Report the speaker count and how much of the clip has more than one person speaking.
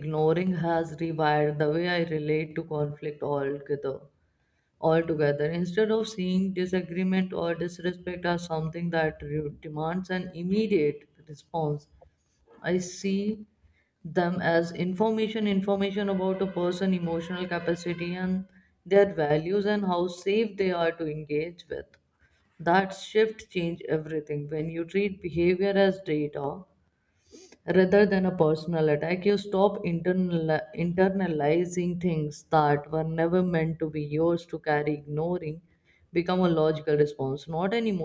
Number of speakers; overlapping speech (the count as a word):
one, no overlap